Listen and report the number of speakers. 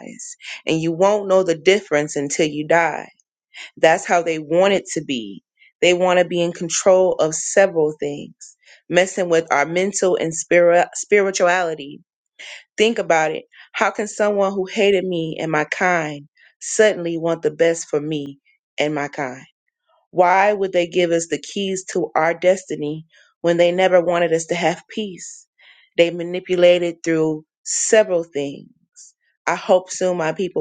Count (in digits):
1